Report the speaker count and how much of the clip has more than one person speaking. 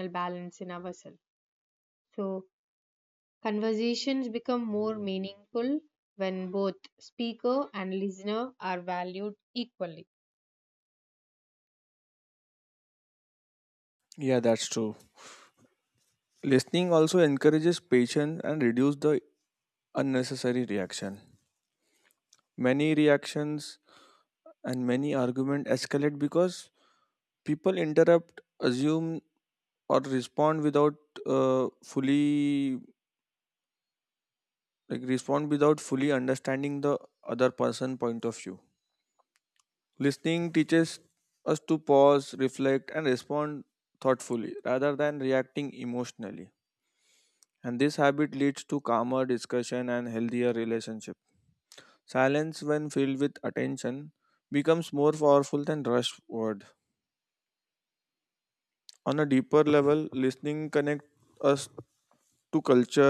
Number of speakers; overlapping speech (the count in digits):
2, no overlap